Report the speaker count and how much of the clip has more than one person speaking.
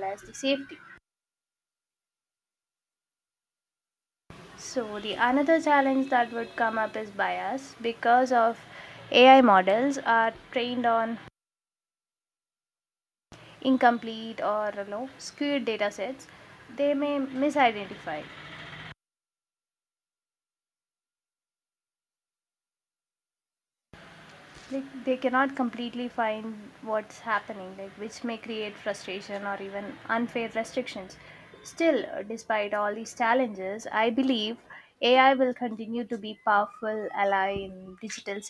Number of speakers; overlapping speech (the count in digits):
1, no overlap